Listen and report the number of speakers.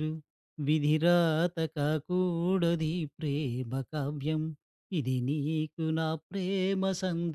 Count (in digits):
1